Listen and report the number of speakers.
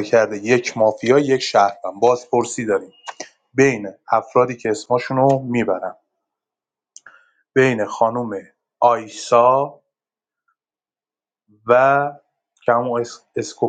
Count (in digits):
1